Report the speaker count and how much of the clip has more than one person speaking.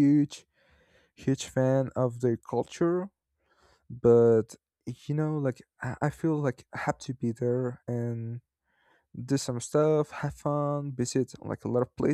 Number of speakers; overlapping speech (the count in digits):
1, no overlap